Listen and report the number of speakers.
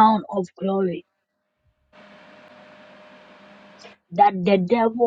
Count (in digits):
1